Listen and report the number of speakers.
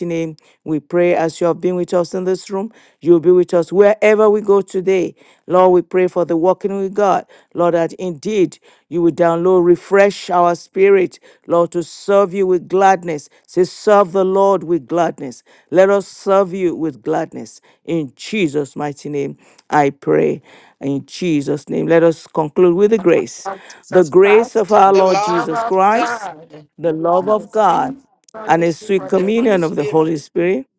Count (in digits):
2